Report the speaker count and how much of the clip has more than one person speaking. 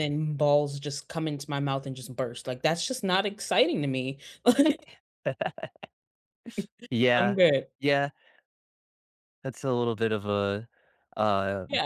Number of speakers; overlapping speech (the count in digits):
2, about 4%